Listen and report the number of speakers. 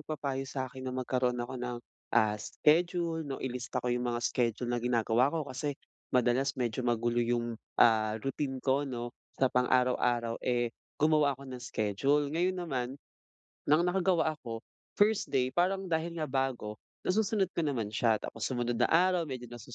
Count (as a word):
one